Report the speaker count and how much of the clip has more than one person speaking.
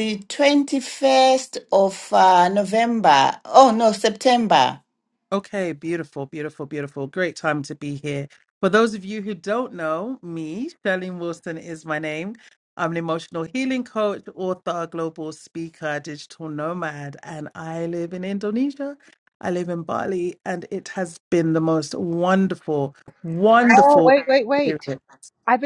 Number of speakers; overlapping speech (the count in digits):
3, about 3%